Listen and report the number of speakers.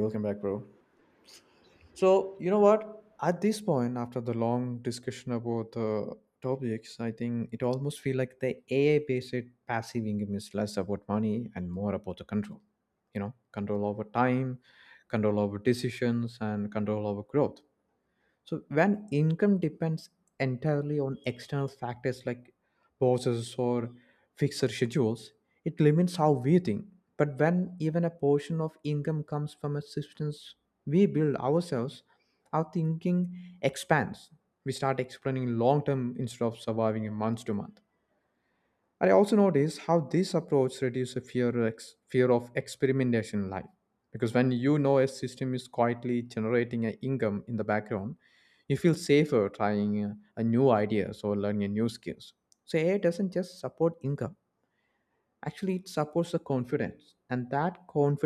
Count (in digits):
1